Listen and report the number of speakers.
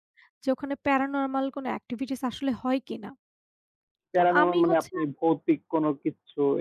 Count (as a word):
two